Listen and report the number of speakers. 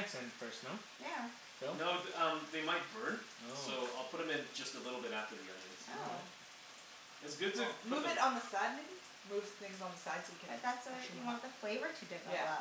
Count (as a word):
four